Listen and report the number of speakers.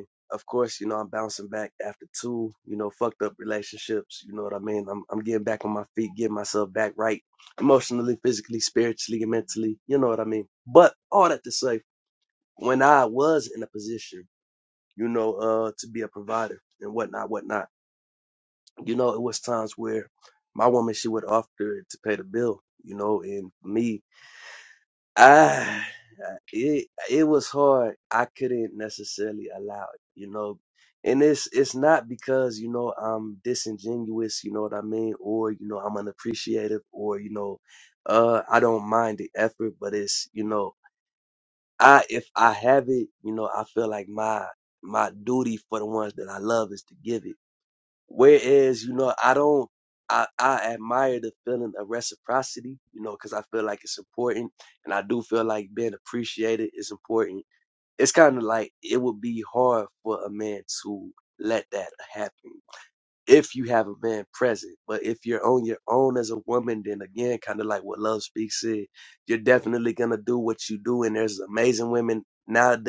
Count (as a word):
one